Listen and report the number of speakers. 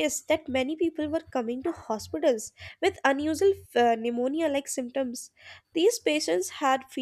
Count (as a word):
one